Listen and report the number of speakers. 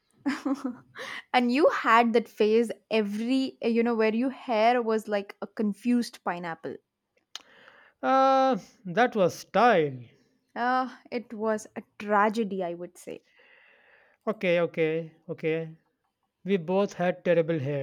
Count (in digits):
2